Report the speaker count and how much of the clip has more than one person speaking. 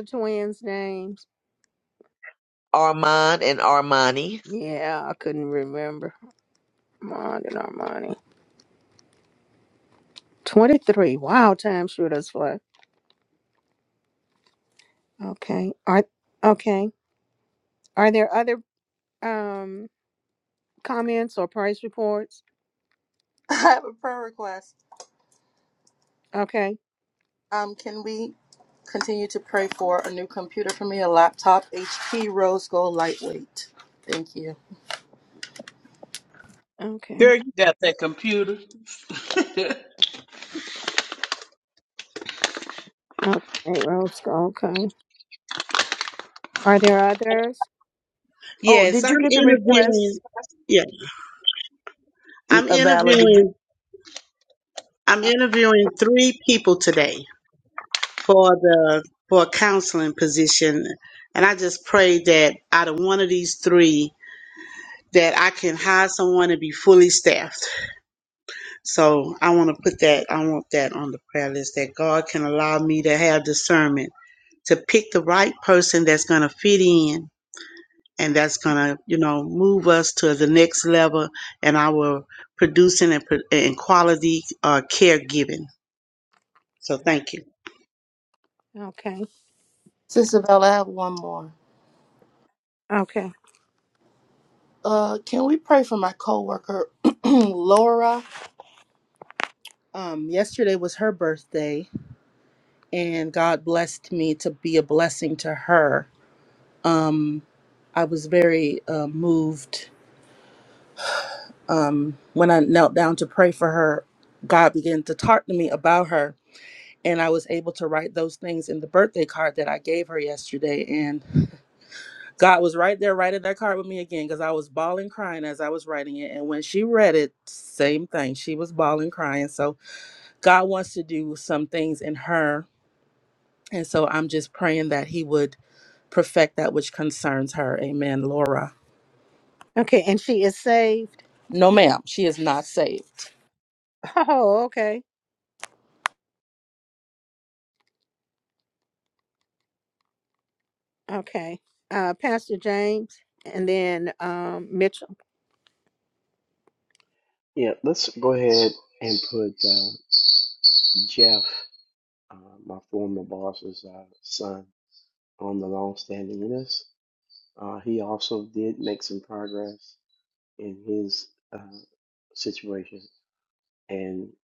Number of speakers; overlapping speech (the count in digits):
6, about 1%